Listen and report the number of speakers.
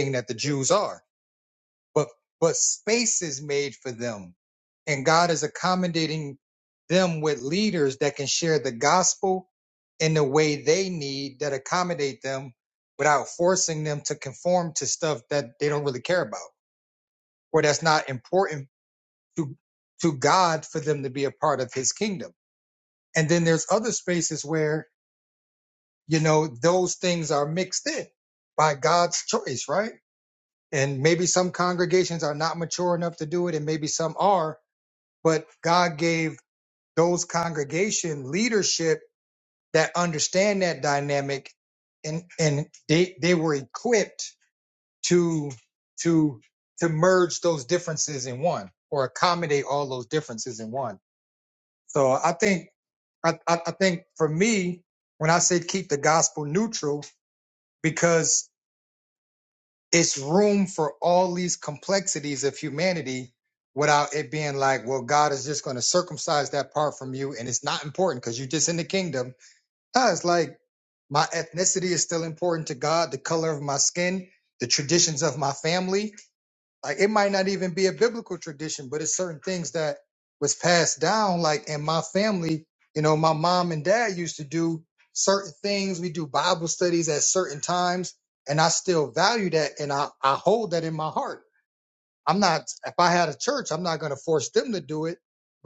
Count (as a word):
one